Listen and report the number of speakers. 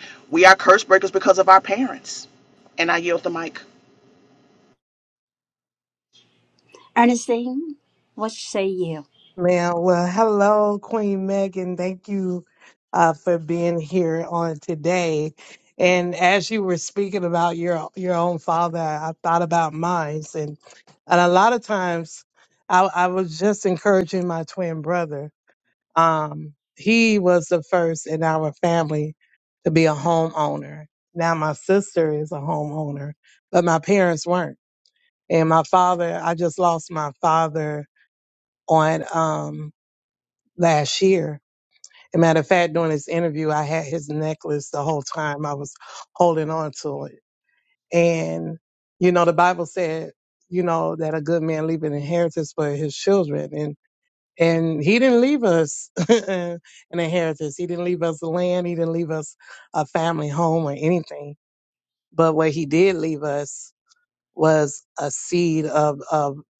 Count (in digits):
3